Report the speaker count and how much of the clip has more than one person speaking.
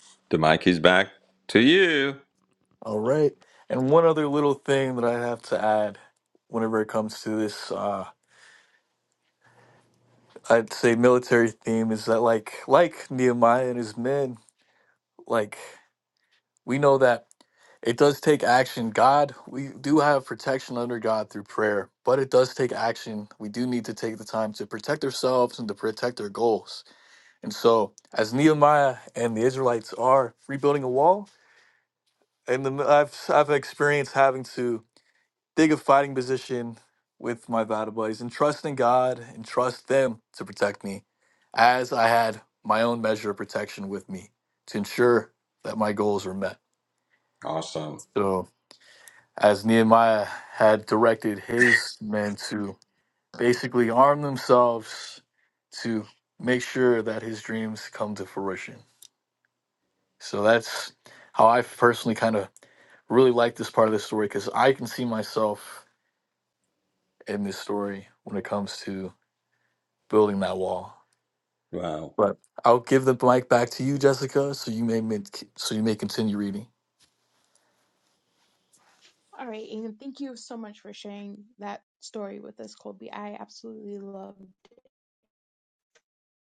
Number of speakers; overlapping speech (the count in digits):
3, no overlap